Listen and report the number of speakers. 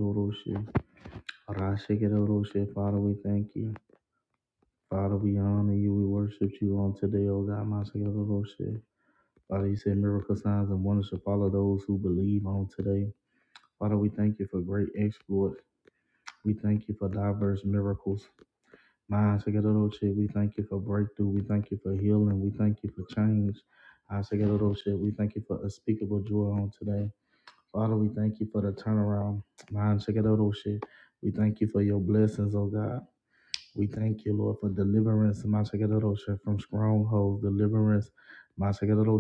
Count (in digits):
1